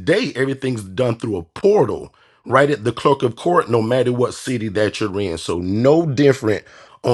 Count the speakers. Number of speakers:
1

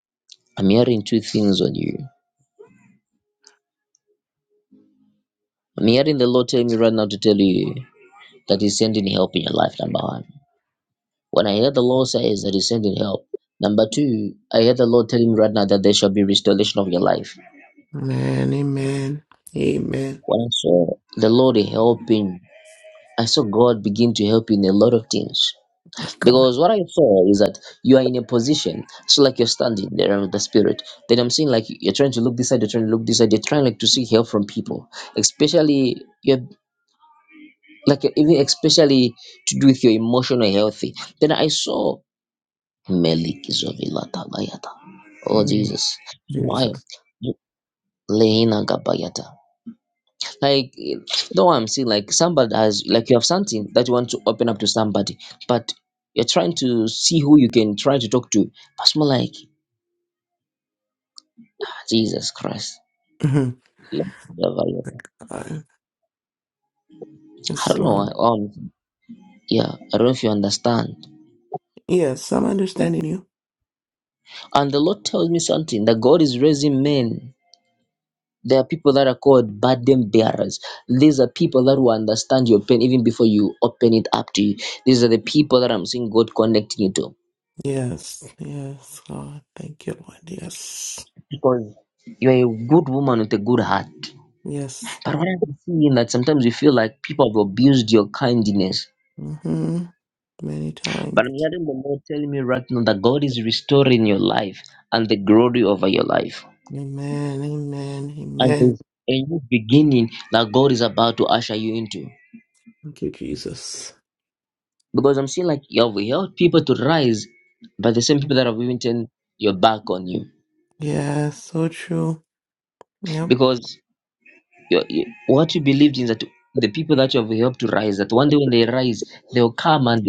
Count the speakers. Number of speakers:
2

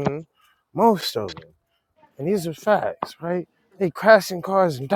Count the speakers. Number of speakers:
1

